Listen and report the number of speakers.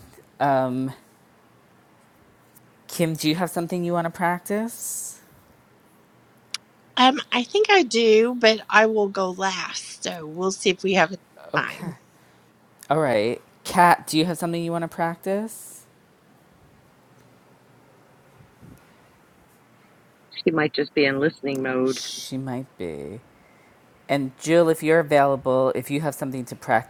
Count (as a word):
three